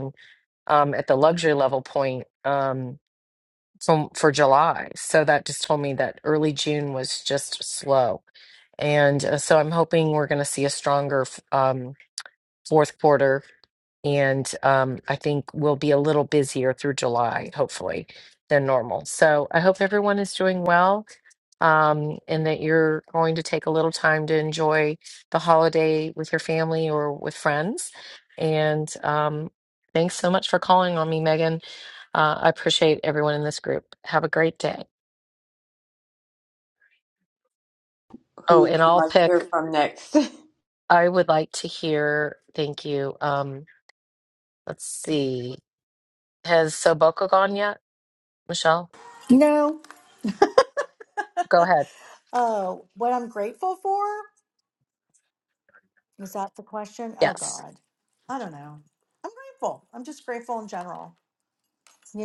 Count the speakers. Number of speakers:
3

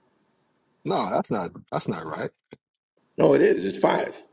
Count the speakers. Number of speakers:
2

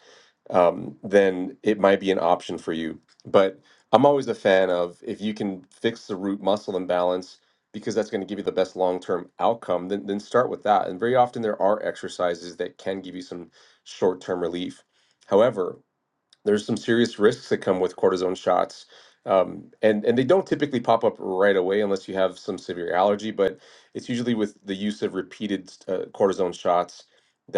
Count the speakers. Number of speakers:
1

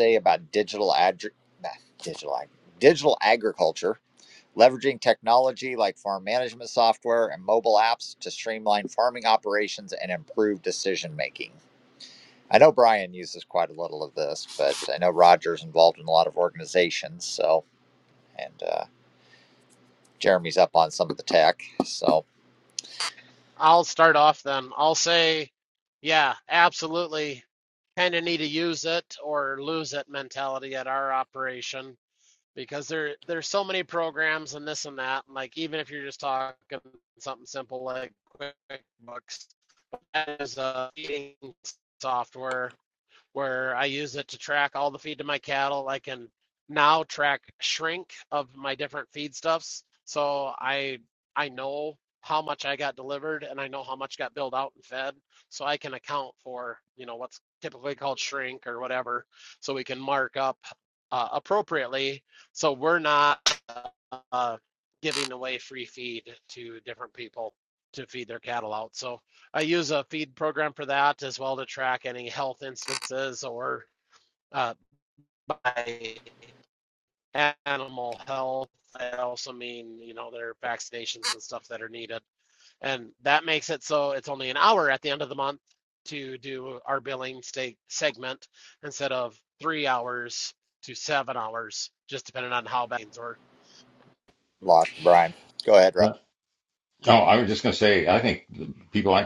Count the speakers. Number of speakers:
3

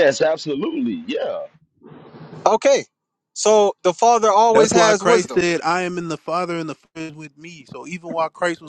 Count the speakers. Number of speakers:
3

